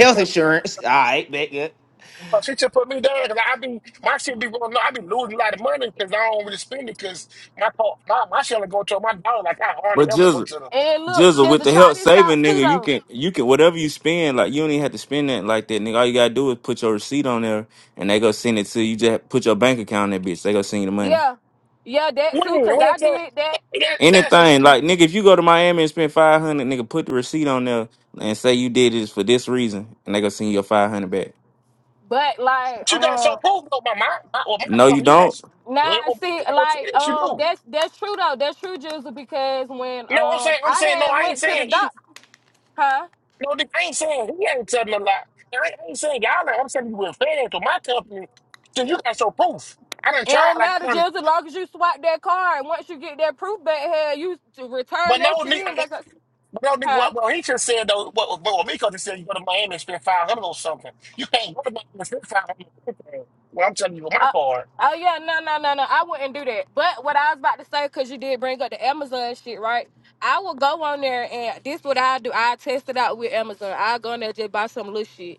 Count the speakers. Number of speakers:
four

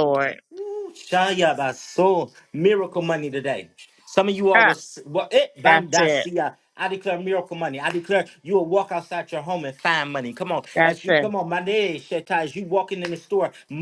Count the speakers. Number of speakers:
two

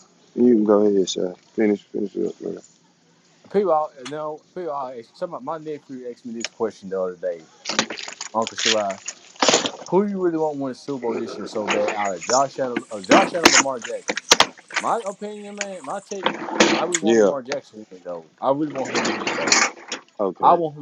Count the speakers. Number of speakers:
two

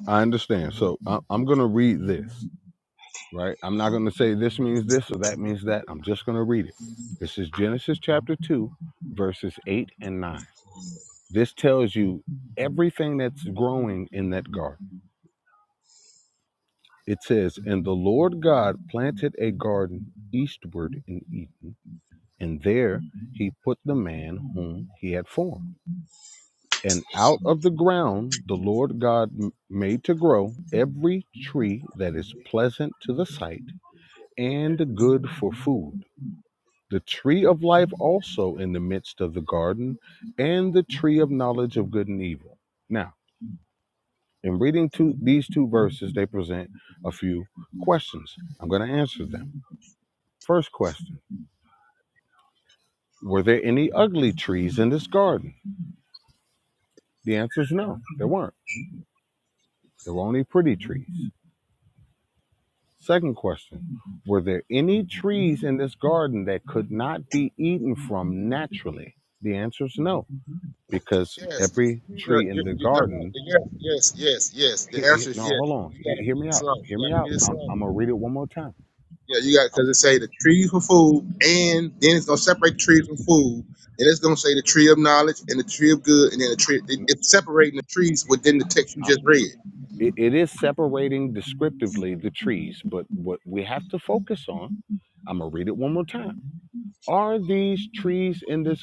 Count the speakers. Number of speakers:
two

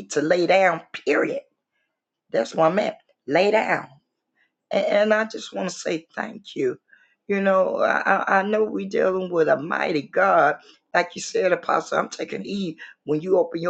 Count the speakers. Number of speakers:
one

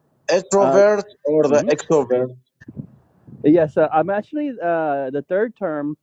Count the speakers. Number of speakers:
two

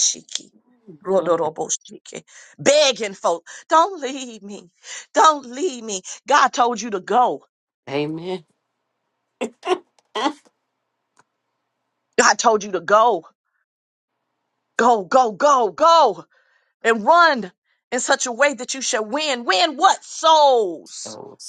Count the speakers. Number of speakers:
two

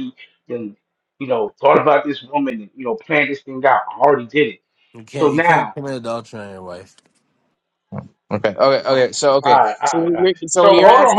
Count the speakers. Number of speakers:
three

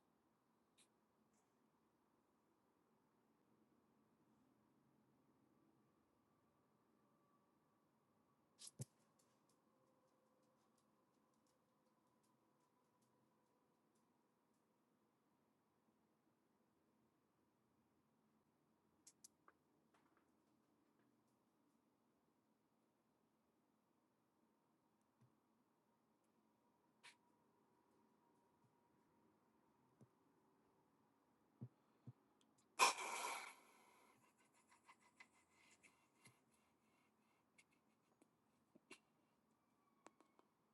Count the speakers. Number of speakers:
zero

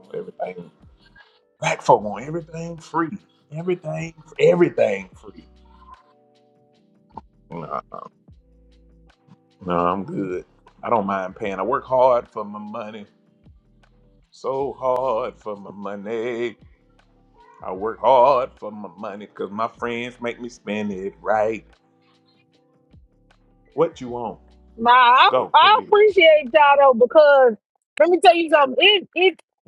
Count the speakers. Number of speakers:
two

